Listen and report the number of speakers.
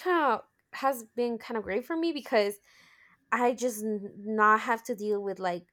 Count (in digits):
1